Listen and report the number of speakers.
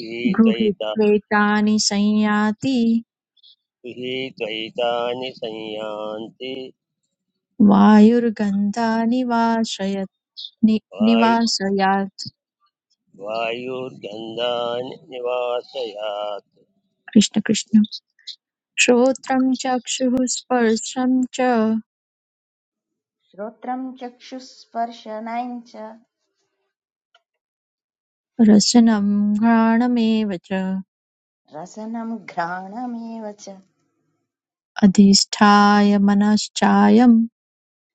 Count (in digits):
3